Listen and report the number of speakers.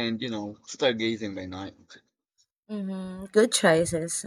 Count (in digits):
2